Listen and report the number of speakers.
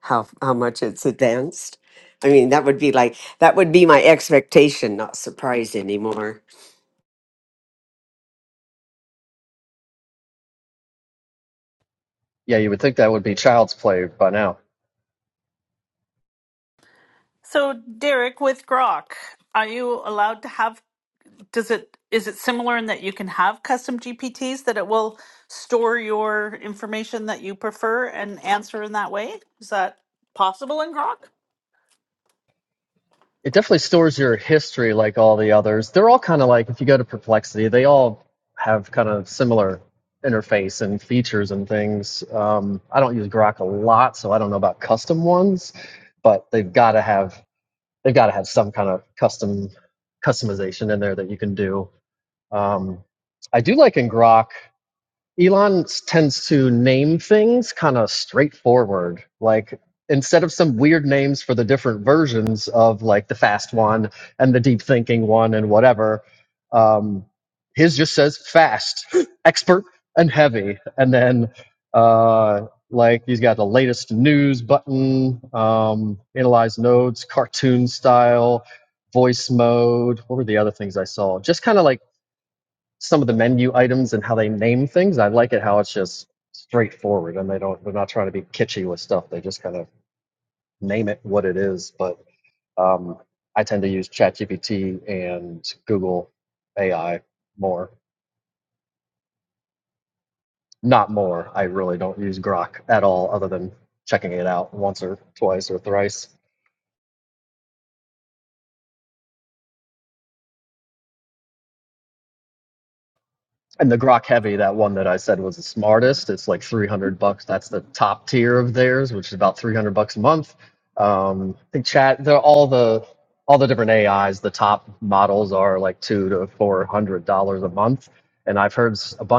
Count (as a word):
three